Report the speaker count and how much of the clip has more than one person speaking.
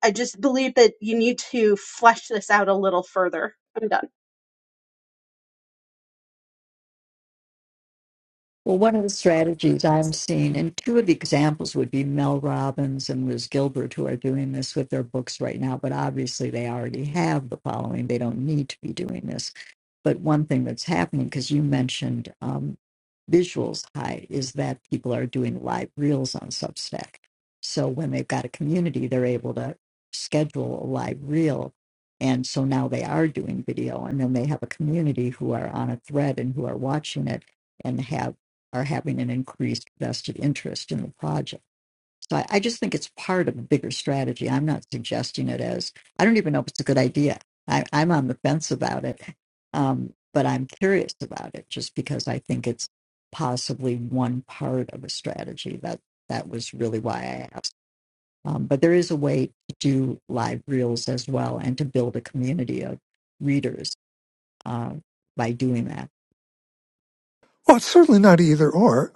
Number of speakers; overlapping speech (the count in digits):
3, no overlap